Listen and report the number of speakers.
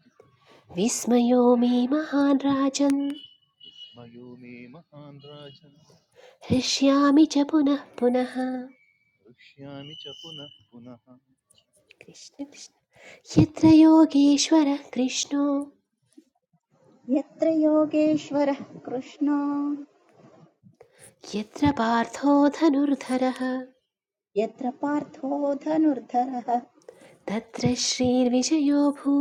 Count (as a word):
three